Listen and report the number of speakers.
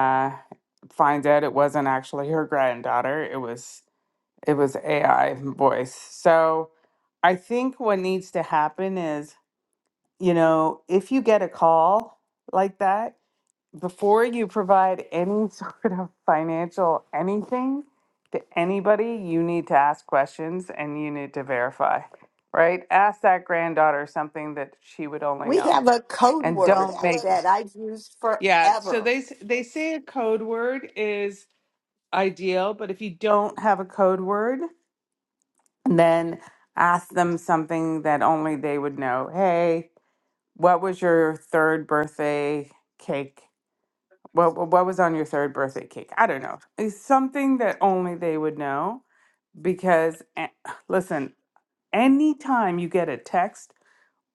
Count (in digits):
2